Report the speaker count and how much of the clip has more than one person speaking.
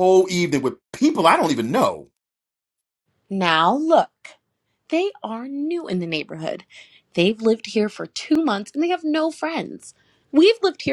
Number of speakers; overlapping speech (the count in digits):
2, no overlap